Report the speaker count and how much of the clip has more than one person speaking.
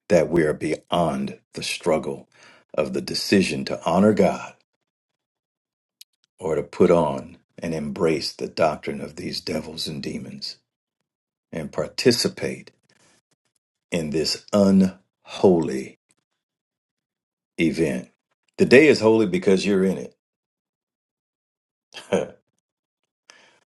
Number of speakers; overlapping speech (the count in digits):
1, no overlap